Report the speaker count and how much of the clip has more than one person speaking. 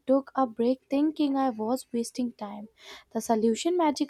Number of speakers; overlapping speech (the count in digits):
1, no overlap